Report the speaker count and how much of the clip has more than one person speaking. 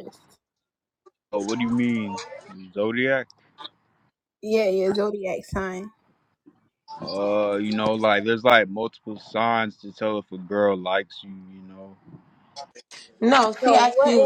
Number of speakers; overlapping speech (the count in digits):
3, about 4%